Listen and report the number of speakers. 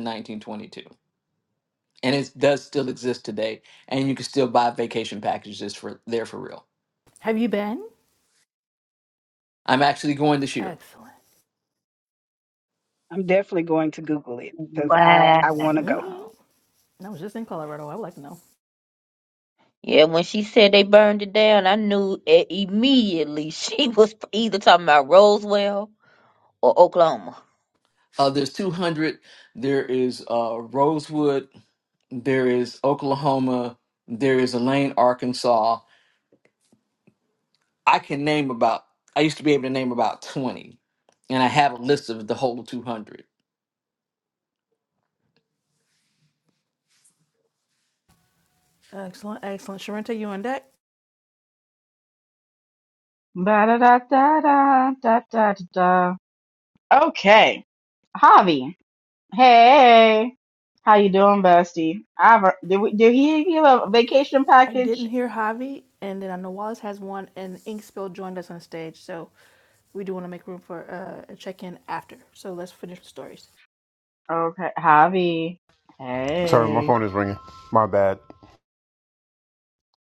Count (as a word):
six